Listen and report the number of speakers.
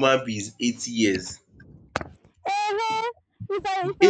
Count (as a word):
two